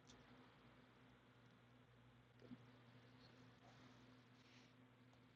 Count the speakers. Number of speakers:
zero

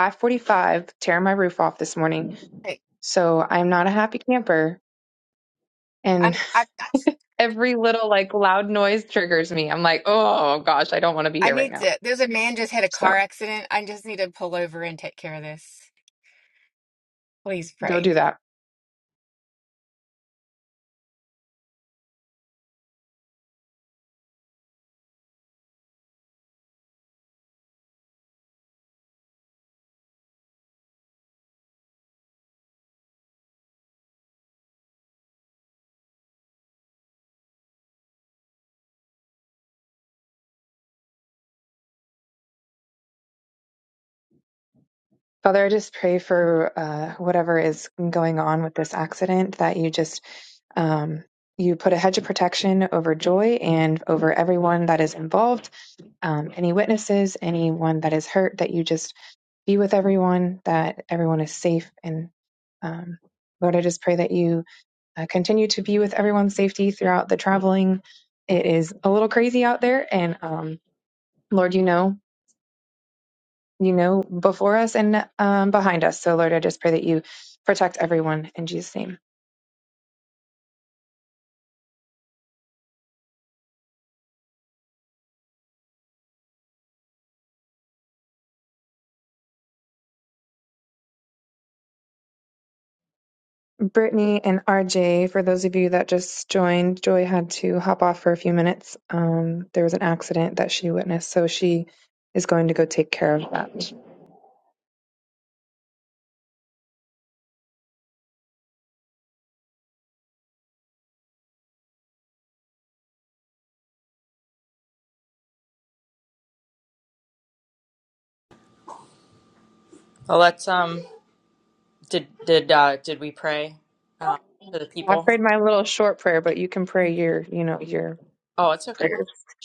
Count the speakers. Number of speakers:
three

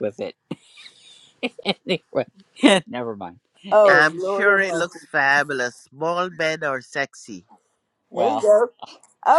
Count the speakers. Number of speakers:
three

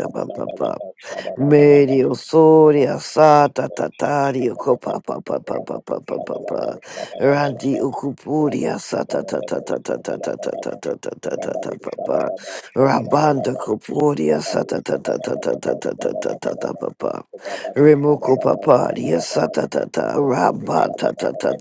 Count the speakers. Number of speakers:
two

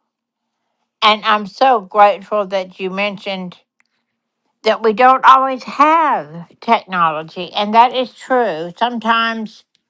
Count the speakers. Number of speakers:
one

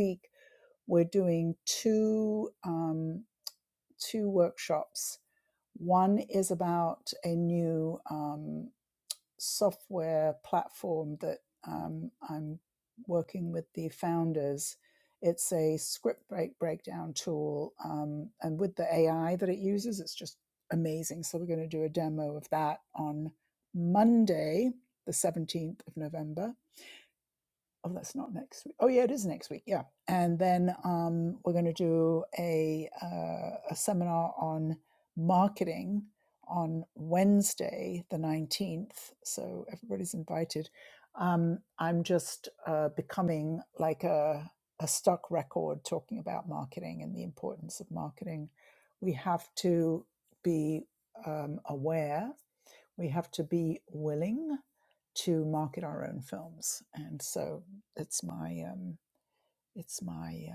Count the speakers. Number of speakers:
one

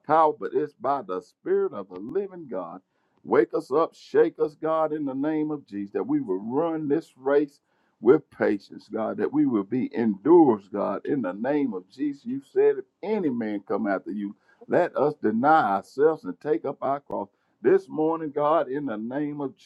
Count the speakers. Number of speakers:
one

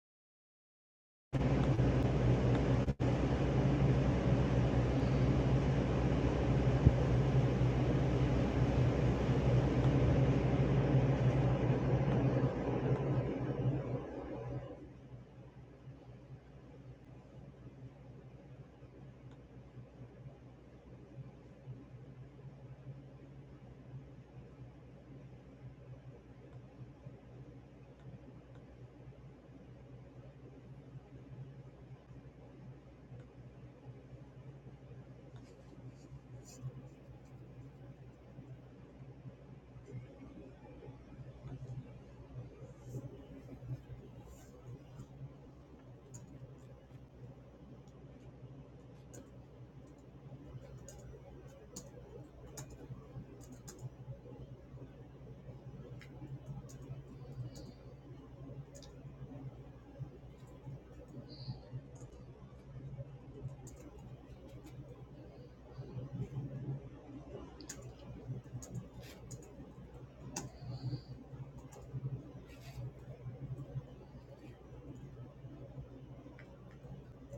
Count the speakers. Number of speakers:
zero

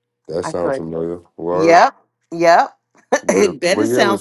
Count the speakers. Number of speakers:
two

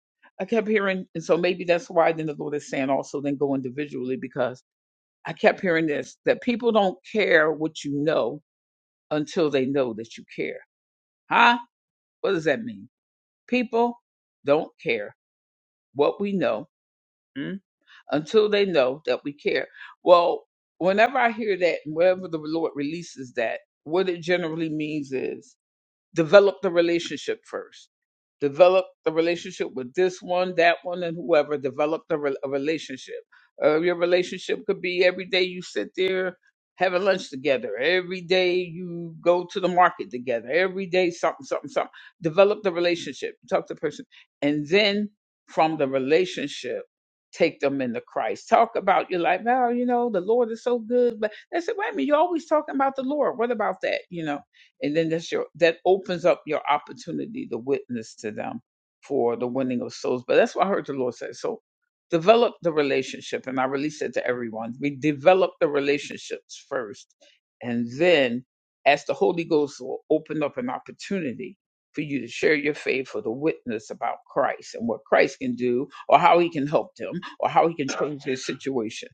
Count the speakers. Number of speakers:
one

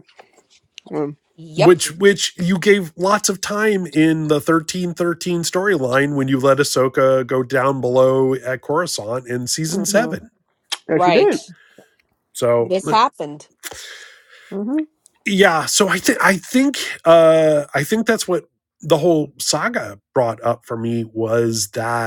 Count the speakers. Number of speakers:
three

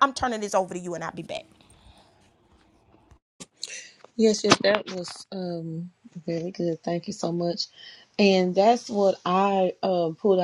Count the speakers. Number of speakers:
two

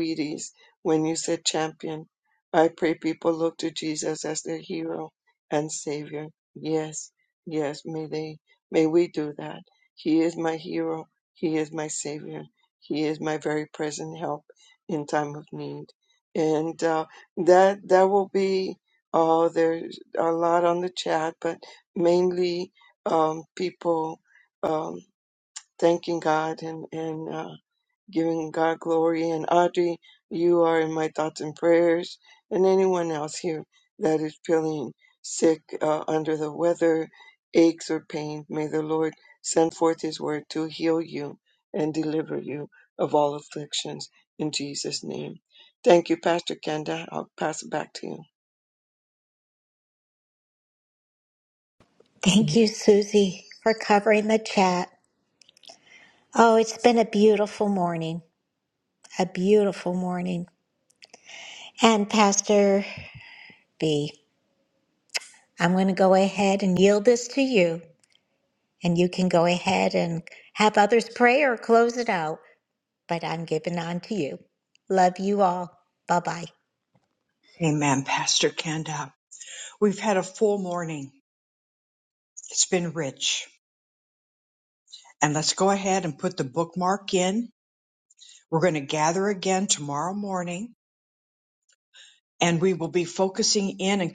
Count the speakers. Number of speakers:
three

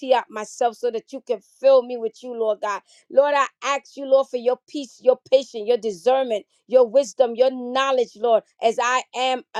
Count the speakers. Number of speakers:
one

